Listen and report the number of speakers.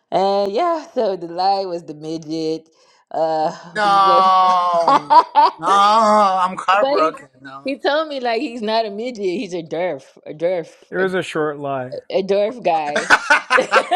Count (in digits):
3